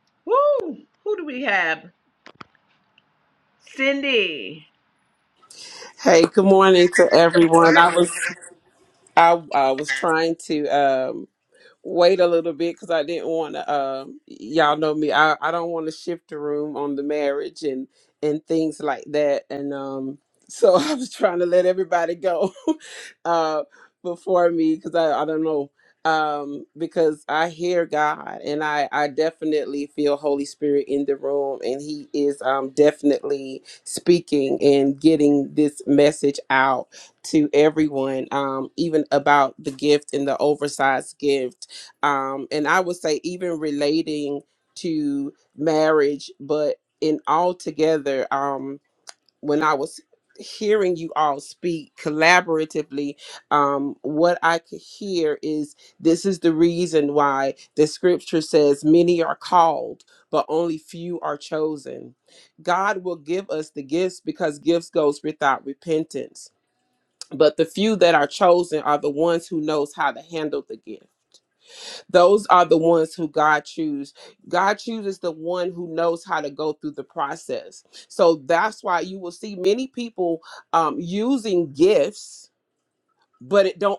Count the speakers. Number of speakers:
2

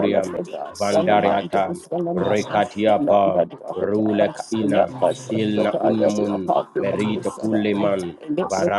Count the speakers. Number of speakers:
2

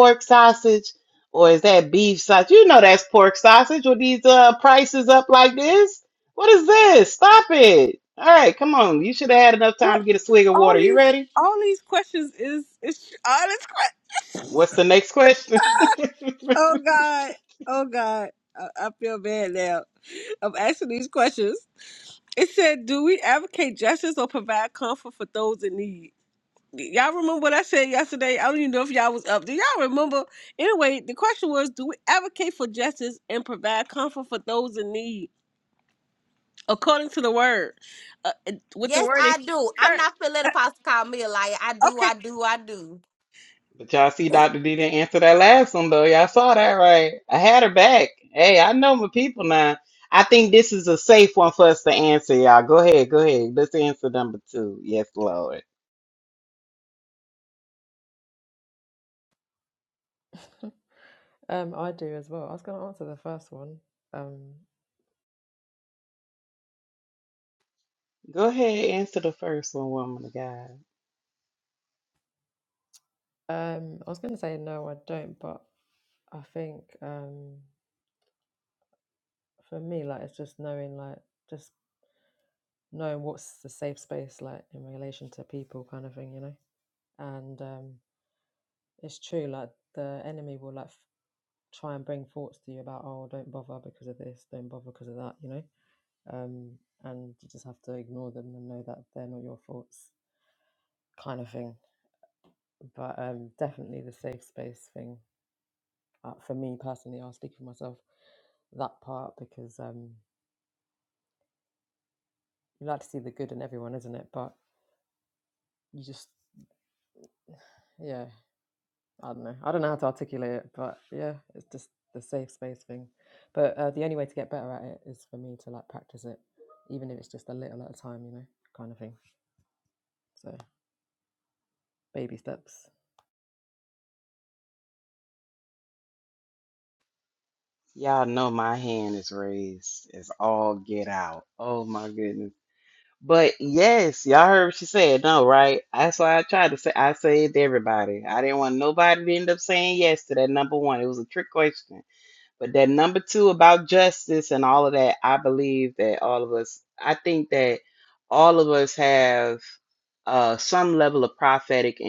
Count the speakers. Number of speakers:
4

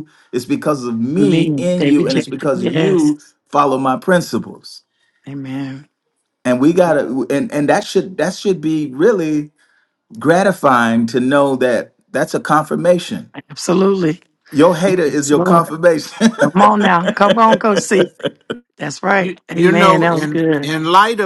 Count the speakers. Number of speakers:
3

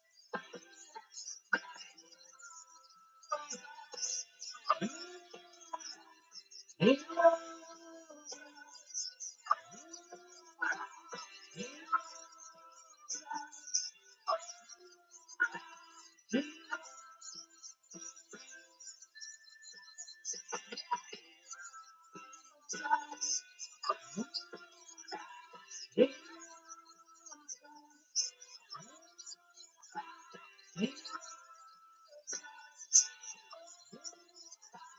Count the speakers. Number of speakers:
0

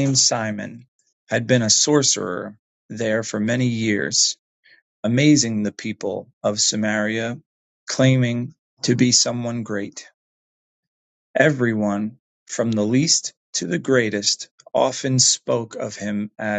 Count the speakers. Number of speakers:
1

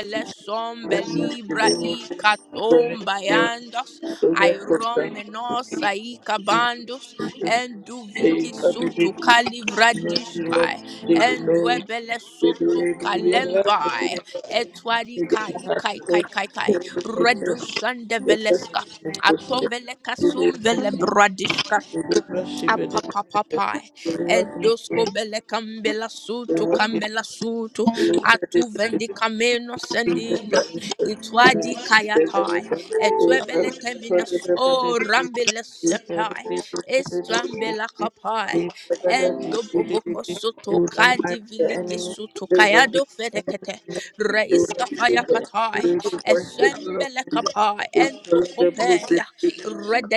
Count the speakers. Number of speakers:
2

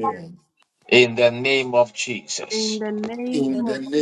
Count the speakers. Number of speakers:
3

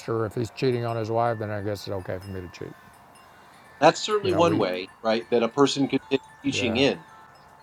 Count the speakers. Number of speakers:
2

